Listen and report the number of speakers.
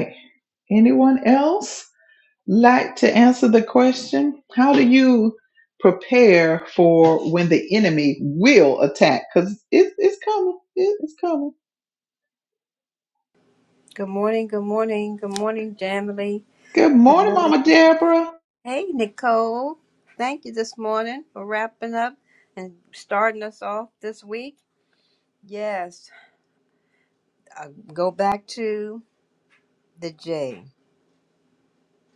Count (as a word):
two